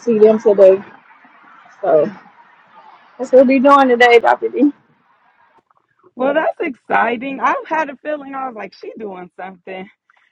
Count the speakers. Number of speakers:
2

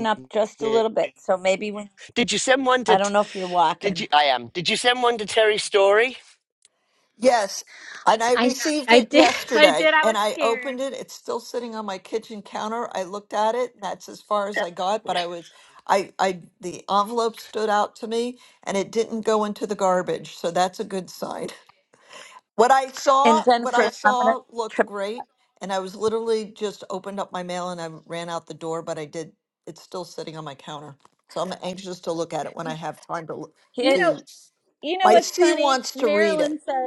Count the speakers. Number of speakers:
4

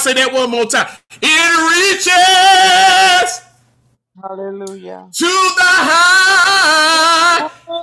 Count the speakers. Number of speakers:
2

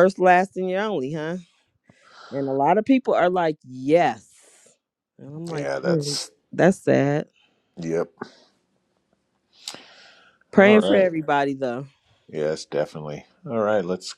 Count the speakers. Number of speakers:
2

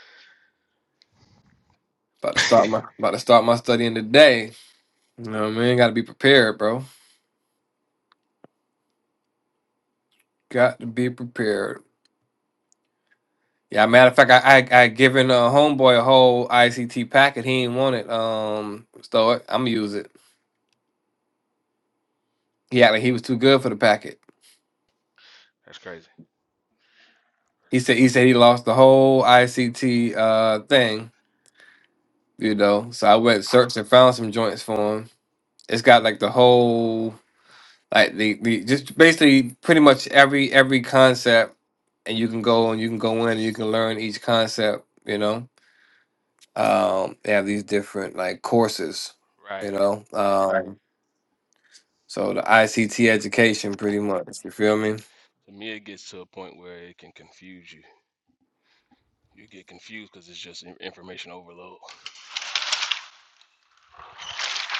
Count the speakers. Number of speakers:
2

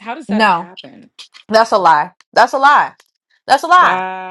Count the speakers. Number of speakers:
2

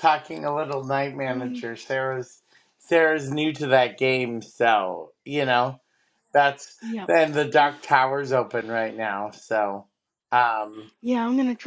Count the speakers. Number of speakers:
2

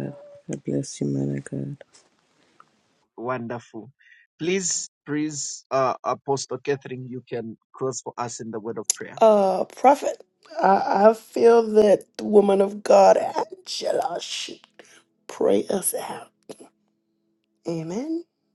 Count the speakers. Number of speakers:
3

